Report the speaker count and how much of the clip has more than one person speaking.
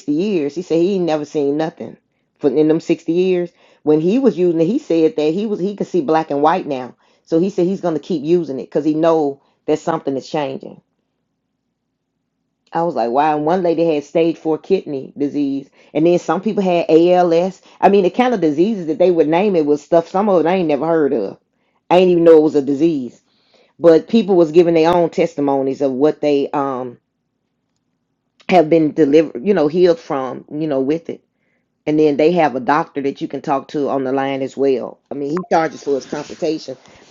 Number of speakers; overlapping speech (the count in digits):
1, no overlap